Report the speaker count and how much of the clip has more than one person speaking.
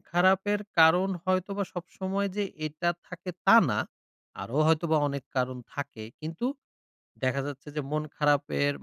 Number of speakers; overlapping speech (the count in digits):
1, no overlap